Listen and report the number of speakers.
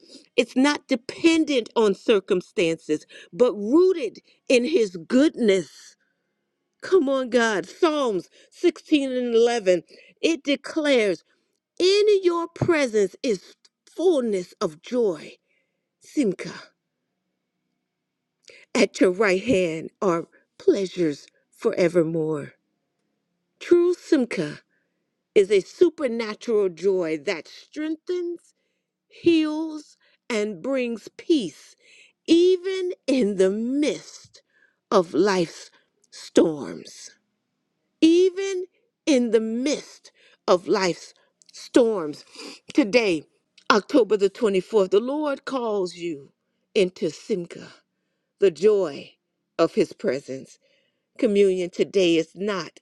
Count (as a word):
one